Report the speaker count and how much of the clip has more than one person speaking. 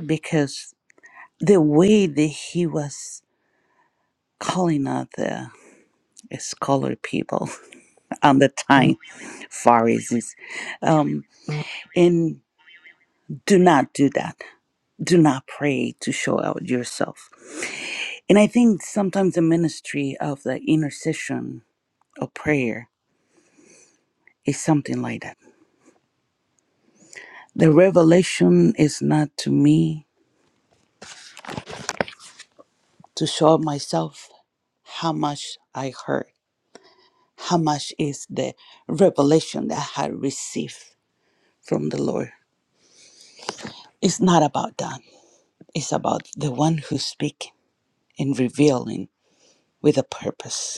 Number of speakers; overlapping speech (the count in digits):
1, no overlap